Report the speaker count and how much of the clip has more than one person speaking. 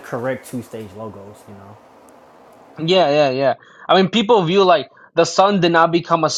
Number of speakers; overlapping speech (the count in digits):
2, no overlap